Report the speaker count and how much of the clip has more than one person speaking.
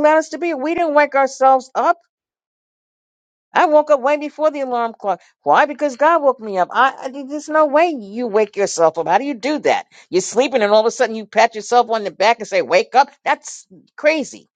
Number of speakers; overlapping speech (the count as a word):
one, no overlap